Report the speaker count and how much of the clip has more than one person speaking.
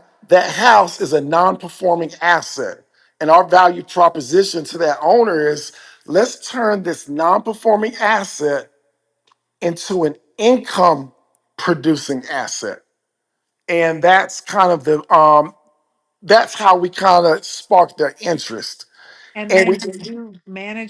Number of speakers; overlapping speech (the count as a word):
two, about 2%